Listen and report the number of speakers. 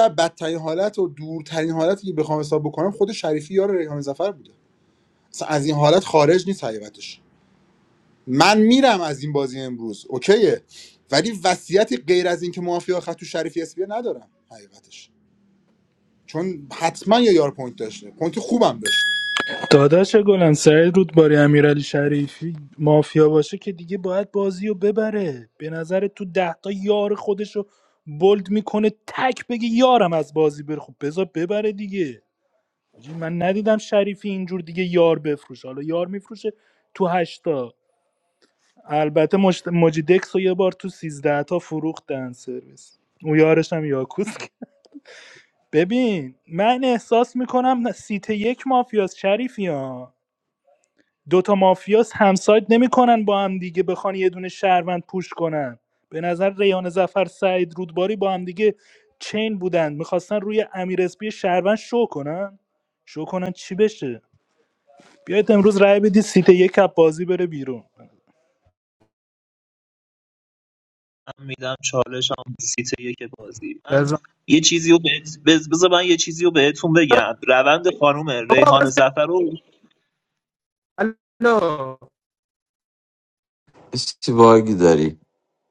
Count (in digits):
5